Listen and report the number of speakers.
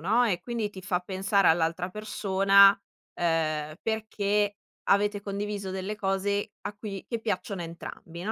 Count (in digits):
1